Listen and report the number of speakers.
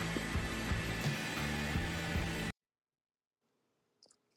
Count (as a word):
zero